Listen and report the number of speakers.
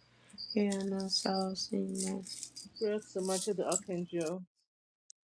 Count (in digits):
2